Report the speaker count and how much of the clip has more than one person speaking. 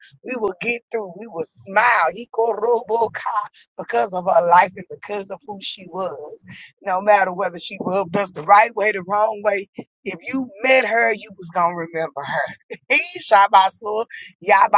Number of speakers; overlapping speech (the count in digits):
1, no overlap